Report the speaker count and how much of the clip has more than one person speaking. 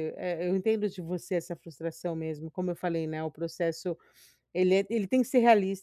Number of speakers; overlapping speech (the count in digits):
1, no overlap